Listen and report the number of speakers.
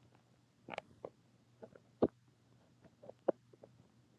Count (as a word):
zero